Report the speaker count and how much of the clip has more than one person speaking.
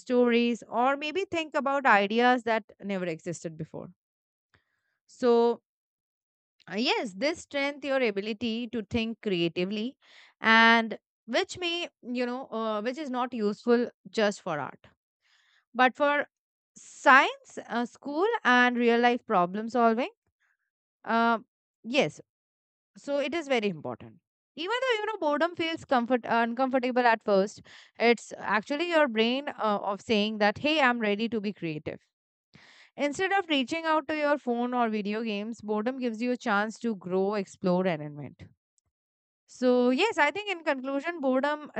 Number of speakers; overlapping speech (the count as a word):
one, no overlap